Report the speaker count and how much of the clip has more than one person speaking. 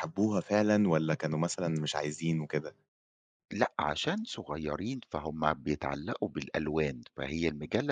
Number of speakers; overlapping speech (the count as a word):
two, no overlap